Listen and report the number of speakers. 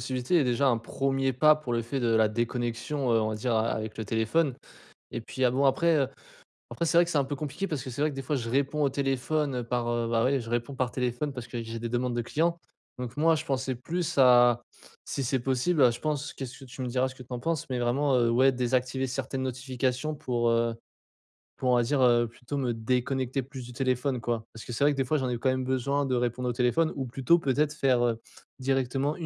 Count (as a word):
one